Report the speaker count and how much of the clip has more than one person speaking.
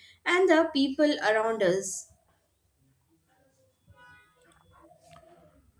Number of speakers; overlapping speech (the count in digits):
1, no overlap